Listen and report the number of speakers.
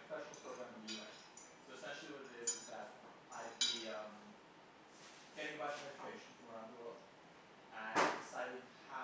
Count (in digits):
1